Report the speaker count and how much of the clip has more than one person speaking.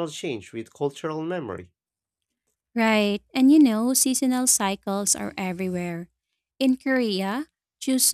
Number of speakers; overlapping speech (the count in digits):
2, no overlap